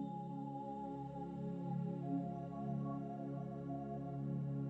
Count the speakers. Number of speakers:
0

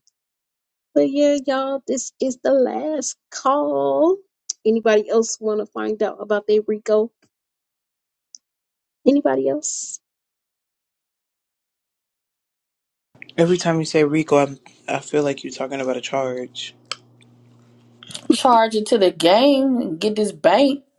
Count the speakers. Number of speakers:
3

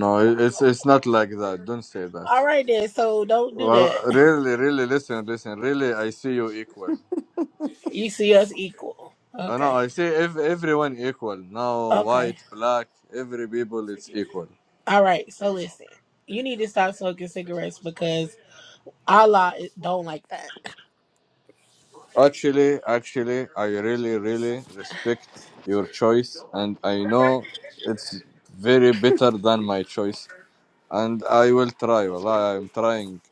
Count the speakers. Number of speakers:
2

